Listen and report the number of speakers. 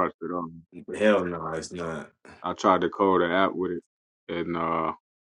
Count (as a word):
two